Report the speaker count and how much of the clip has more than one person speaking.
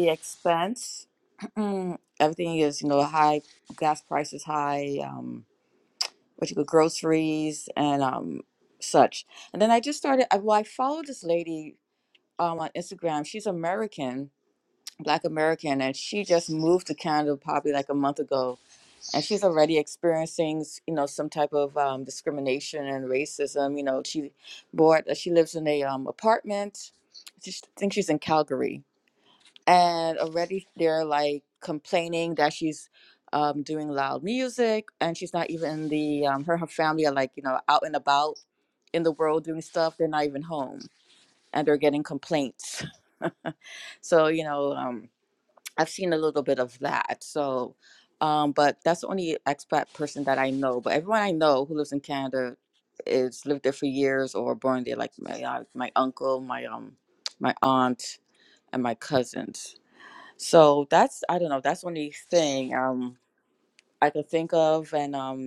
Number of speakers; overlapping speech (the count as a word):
one, no overlap